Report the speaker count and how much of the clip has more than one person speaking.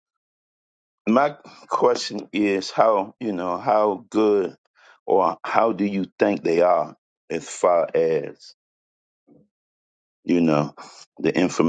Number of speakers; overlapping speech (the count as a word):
one, no overlap